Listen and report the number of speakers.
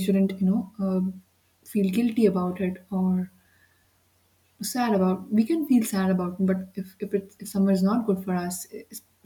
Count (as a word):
one